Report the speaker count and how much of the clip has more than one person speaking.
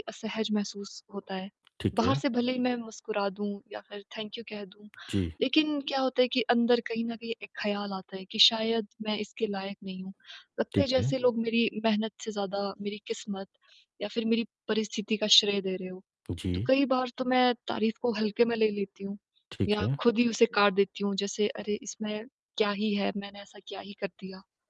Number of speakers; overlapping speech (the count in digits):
2, about 5%